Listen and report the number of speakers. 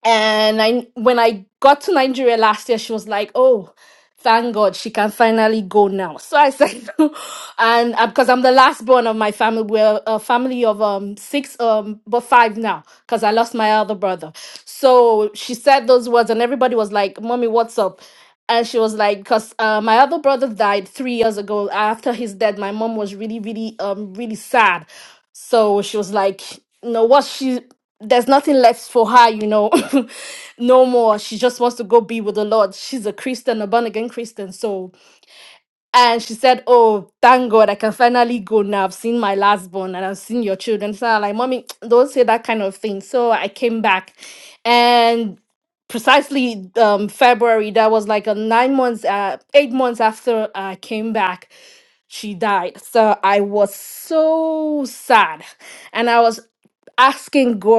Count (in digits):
1